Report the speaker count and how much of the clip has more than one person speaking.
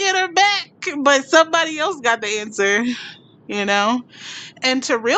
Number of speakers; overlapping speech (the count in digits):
1, no overlap